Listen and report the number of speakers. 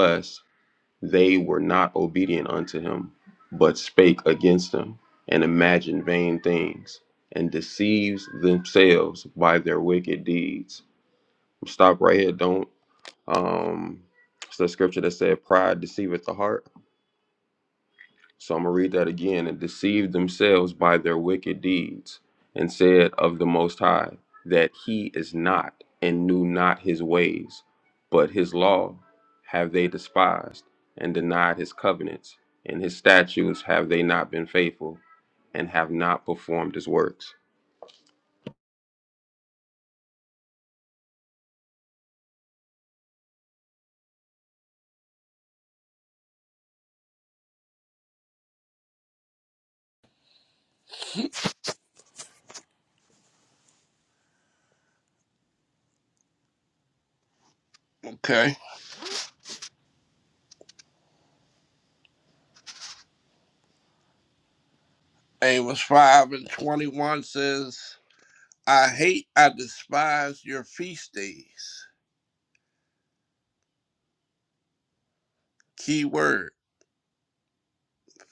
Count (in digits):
2